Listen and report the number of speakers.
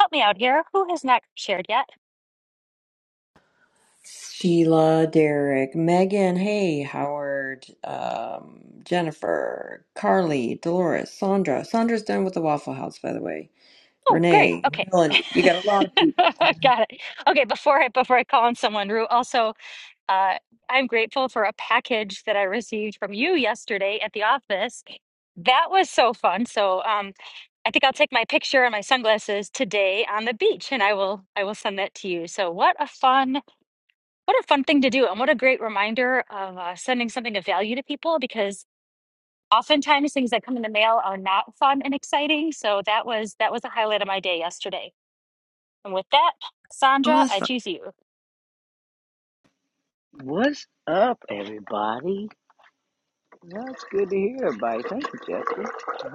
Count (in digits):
3